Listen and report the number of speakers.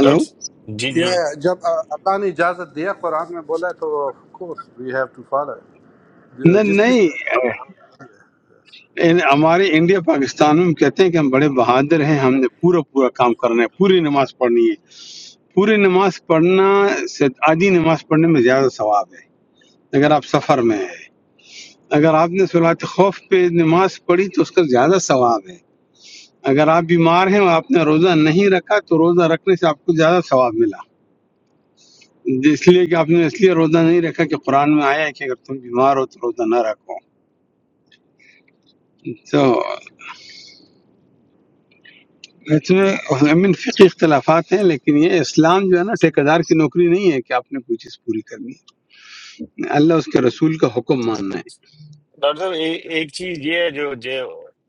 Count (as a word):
three